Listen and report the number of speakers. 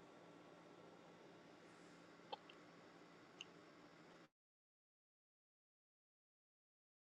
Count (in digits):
0